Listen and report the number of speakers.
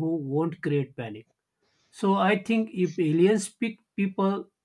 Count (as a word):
one